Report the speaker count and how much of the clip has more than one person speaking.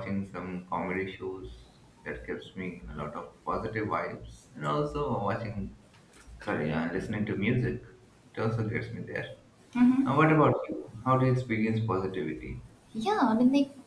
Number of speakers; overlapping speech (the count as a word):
two, about 2%